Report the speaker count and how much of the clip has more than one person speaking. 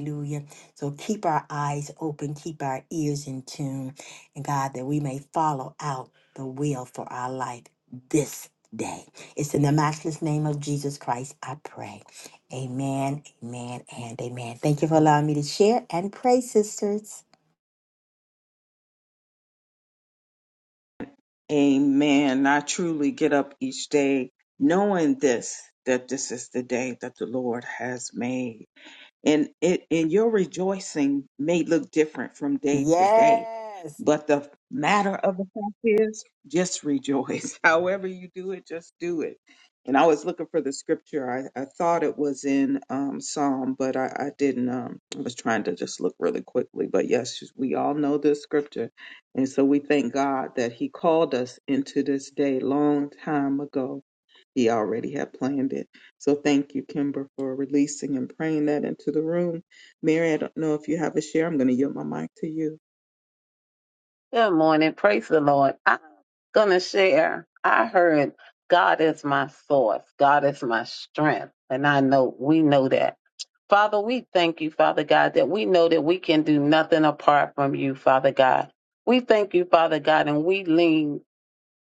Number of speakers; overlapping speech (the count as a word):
three, about 1%